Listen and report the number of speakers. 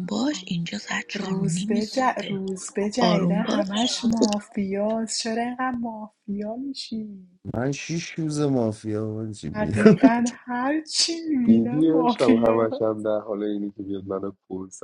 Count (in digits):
4